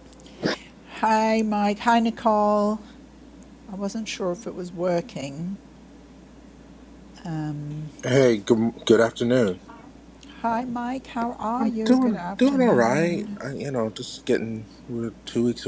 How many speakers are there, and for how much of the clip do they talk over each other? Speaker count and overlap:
2, about 10%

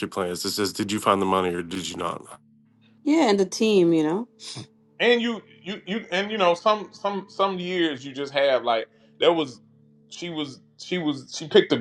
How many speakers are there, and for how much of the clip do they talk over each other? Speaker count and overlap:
3, no overlap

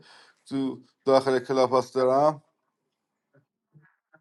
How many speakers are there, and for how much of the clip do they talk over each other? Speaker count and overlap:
1, no overlap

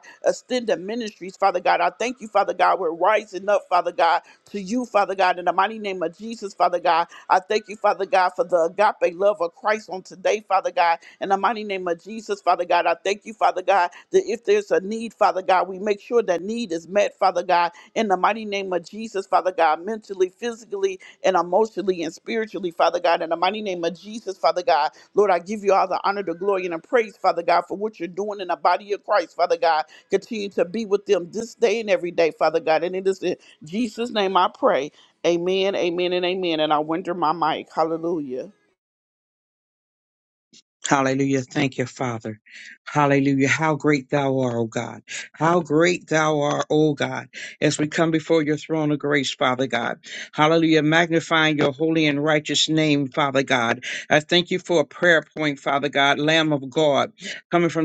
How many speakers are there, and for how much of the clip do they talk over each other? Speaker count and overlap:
2, no overlap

